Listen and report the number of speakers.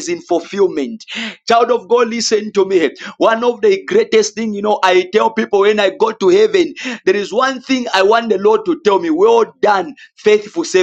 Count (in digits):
1